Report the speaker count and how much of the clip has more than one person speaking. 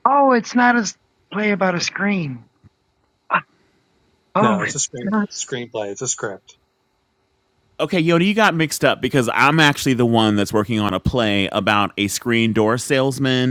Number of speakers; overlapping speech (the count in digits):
3, about 3%